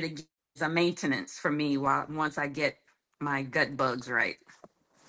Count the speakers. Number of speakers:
1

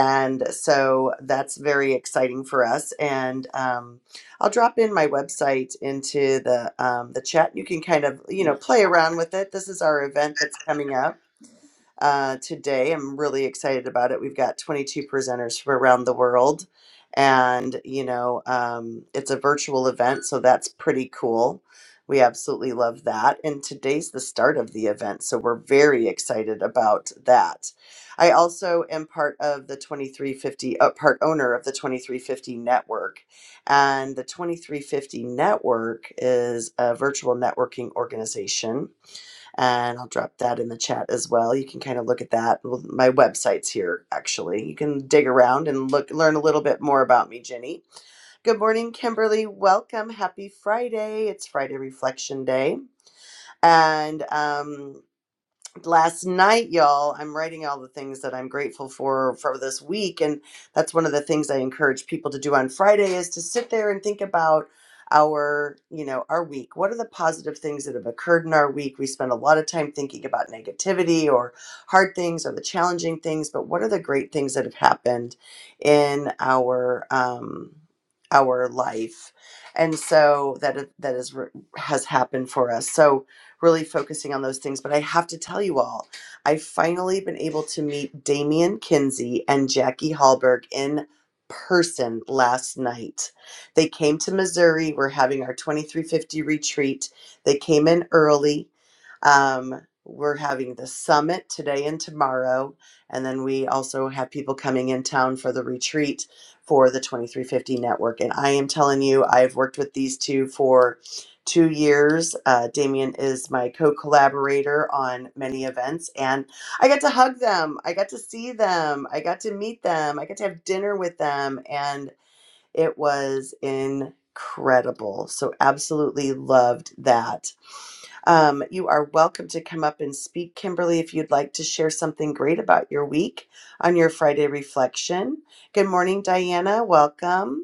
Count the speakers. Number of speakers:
1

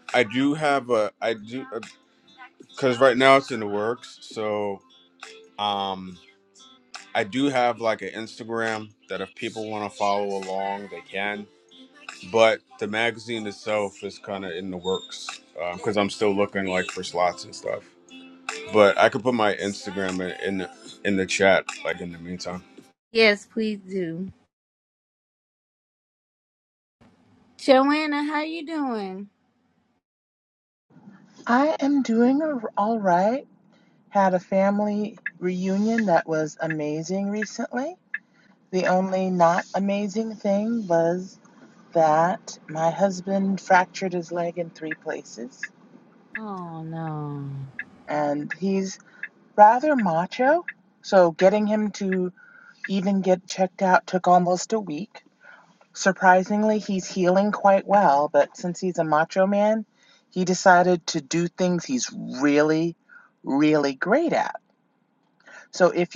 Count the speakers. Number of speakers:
3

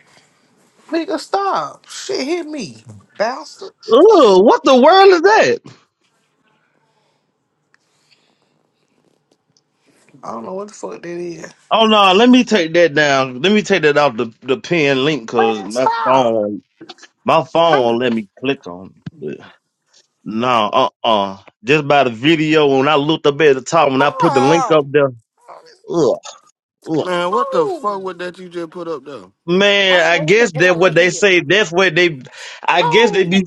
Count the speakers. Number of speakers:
3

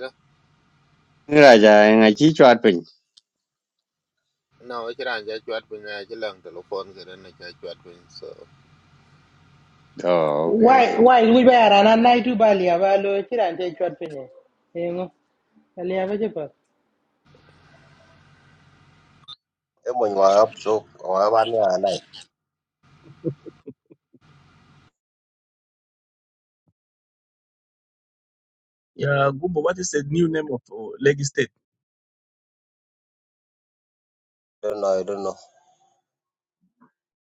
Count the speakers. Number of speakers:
5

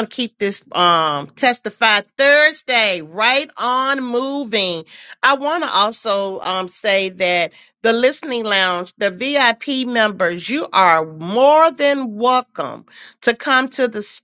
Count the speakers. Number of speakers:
1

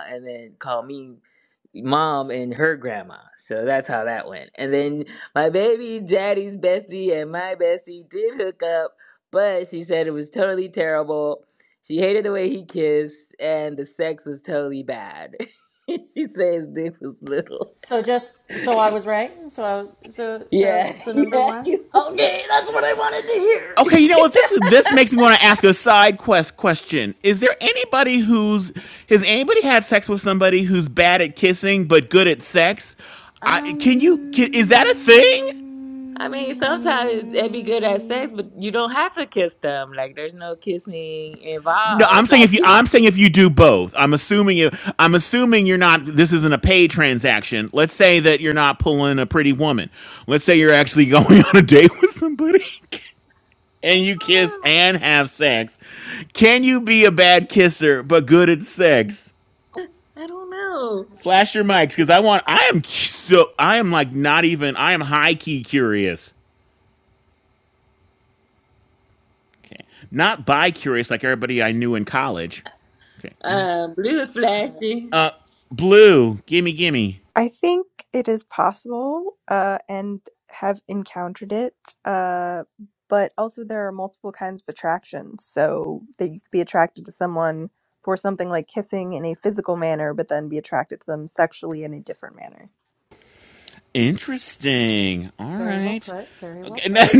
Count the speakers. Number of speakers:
4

